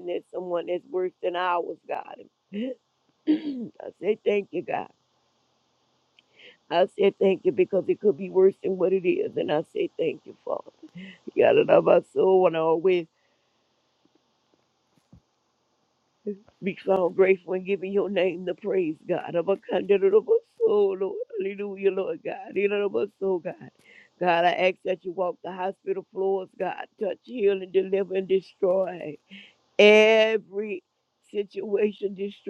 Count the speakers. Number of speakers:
one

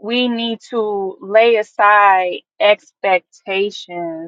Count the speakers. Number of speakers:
one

